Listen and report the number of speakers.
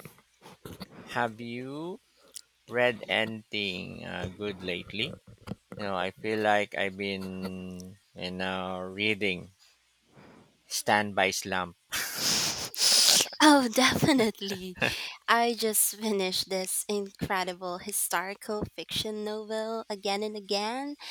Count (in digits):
2